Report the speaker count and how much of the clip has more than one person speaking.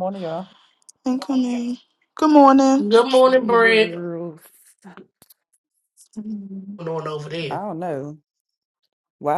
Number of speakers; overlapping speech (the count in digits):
3, about 8%